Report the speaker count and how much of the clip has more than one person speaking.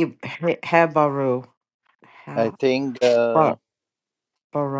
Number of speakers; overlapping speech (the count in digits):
2, about 8%